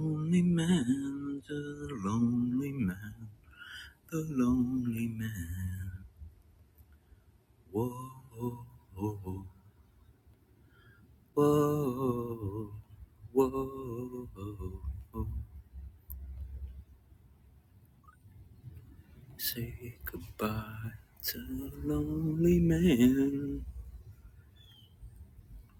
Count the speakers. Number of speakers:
1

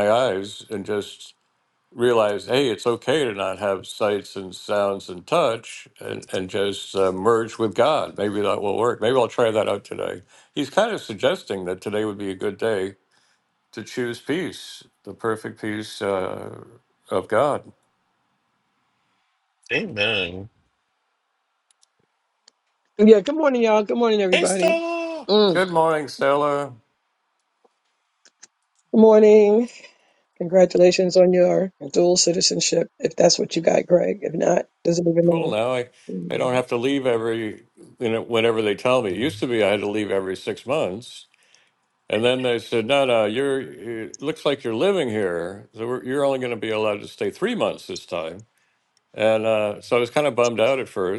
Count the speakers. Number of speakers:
3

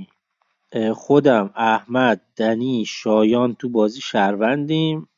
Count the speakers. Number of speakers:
1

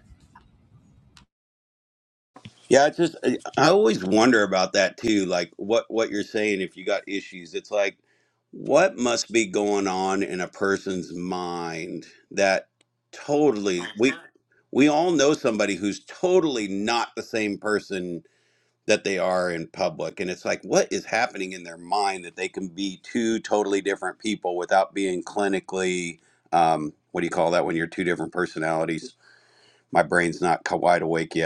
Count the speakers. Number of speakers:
1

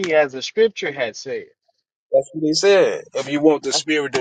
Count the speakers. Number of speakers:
2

